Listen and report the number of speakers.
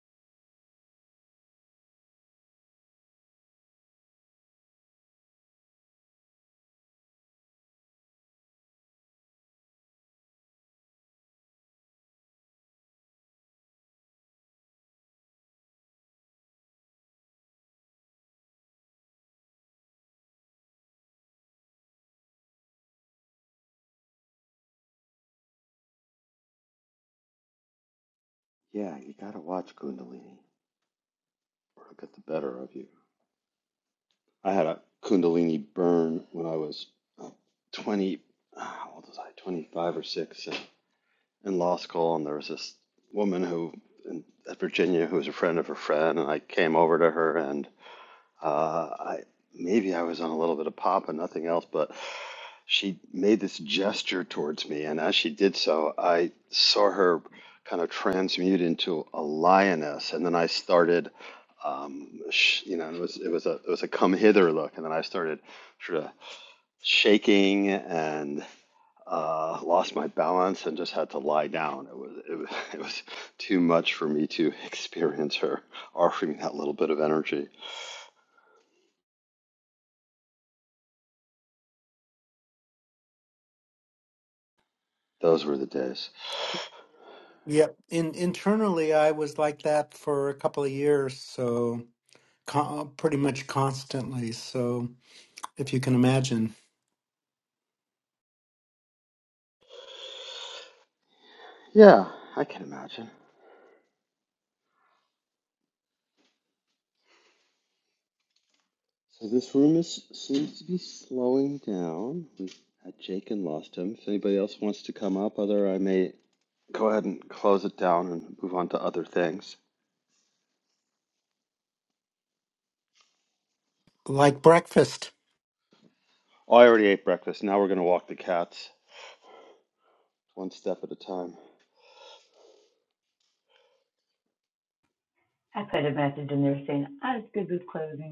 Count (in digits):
3